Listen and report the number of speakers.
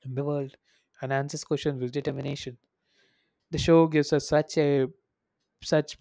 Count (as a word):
one